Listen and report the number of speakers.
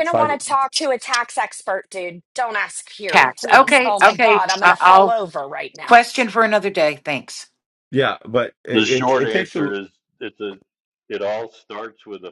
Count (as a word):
four